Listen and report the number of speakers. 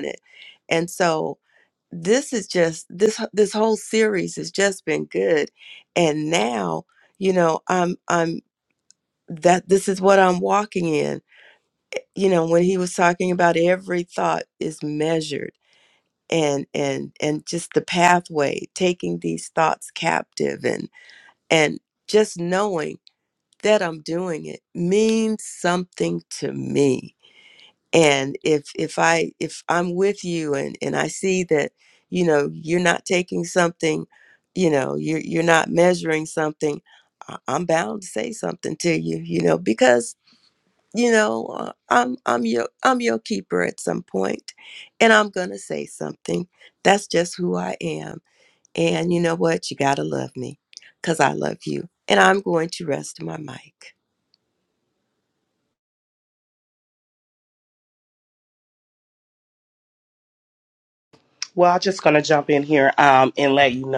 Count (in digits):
2